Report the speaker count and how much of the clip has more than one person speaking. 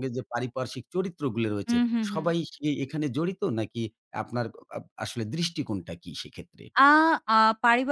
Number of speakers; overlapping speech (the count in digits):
2, about 8%